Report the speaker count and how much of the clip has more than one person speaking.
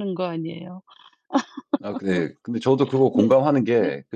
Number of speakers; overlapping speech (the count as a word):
two, about 8%